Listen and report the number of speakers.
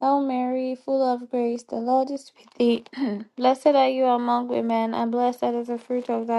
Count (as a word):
one